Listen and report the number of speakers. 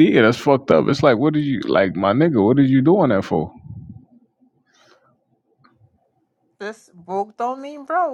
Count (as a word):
two